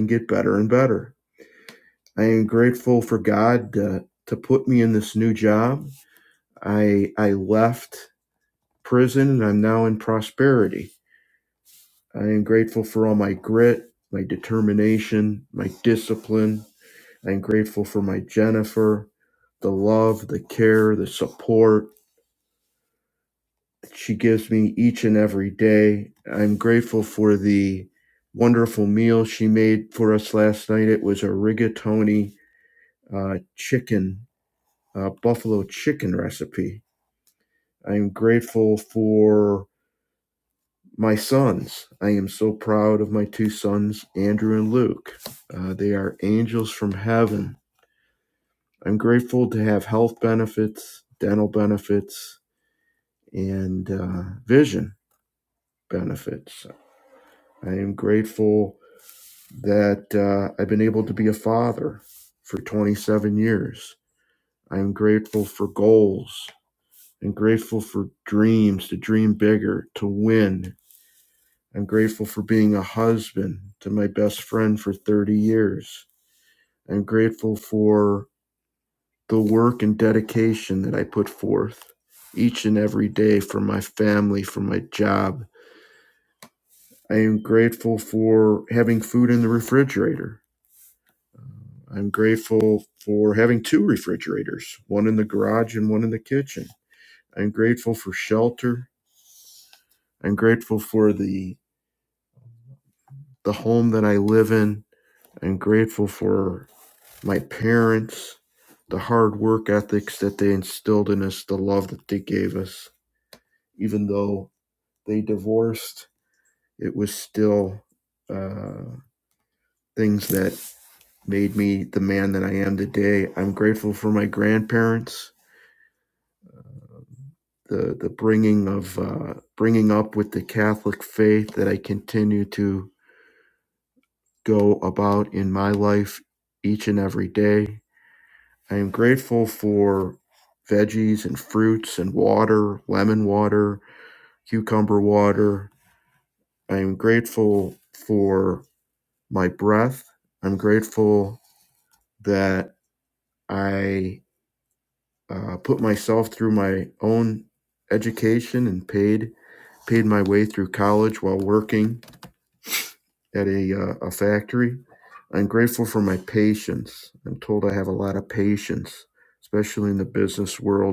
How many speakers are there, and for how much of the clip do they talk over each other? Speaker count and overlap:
1, no overlap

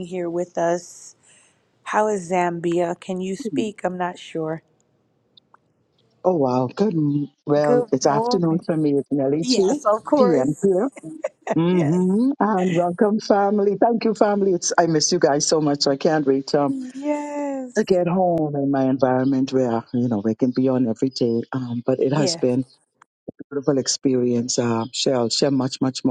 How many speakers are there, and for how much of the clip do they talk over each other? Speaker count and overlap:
2, about 10%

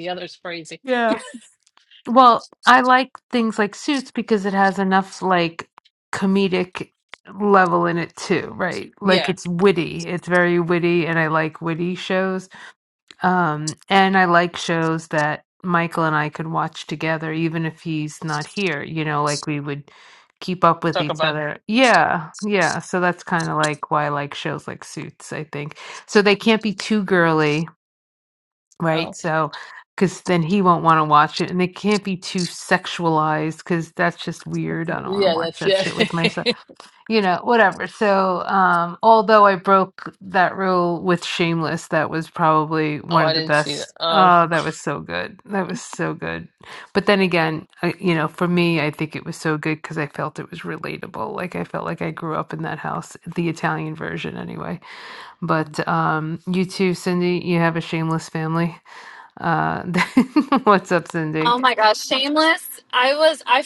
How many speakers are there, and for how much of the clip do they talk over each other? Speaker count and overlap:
3, about 5%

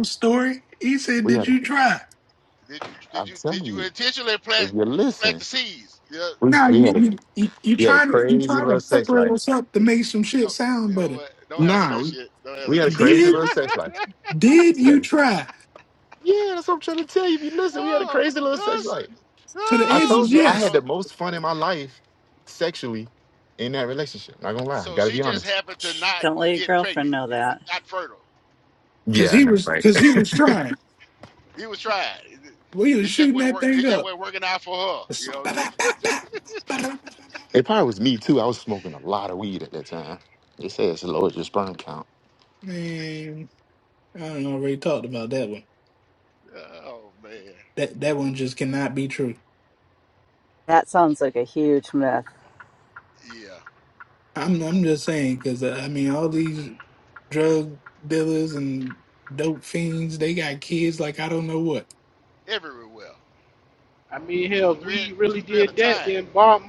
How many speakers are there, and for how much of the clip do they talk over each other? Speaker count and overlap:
5, about 19%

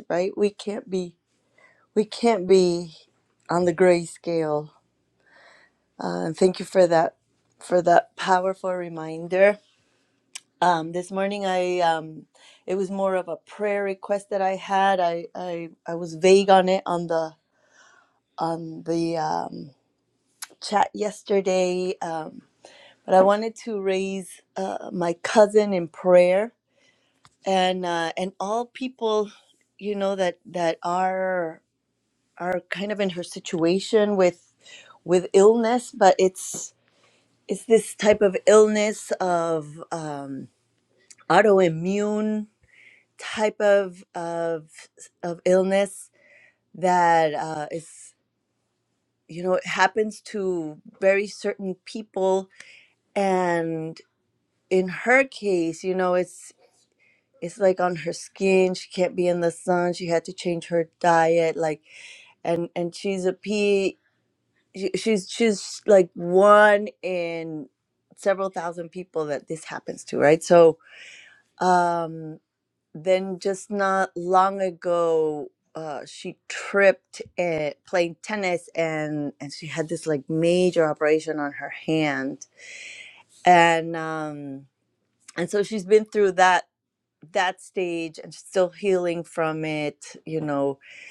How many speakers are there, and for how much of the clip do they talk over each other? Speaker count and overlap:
1, no overlap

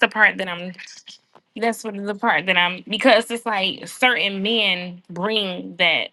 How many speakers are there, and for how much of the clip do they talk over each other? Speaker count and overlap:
1, no overlap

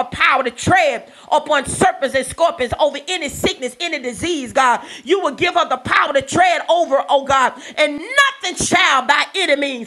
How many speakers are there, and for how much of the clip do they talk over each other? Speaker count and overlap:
1, no overlap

